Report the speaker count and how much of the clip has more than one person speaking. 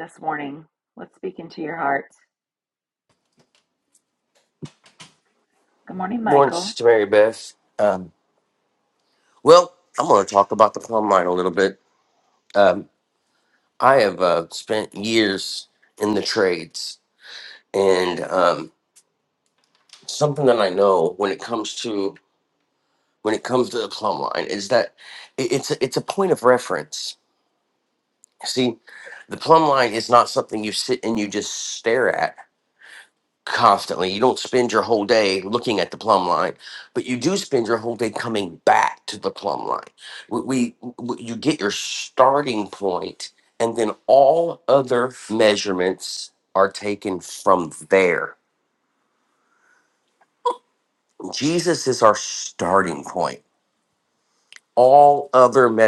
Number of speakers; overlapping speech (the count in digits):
2, about 1%